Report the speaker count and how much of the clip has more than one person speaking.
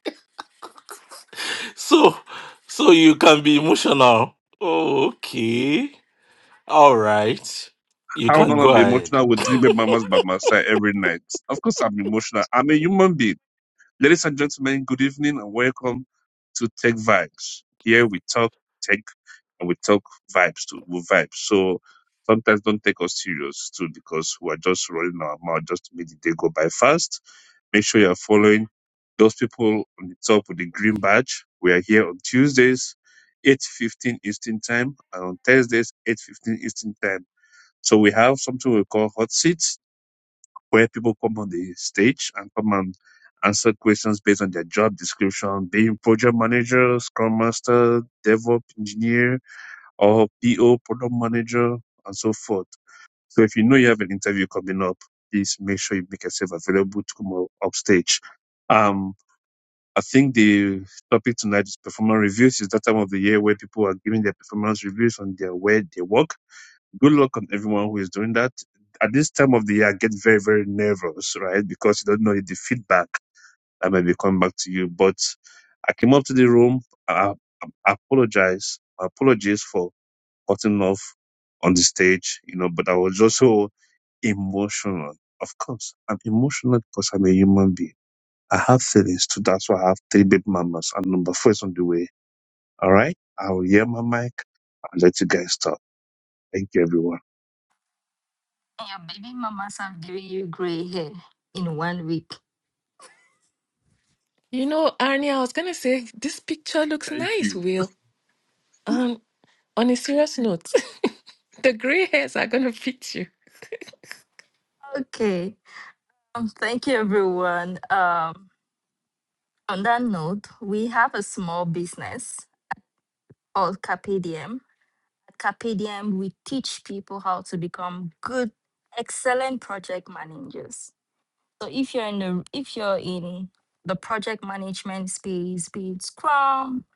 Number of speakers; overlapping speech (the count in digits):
4, about 1%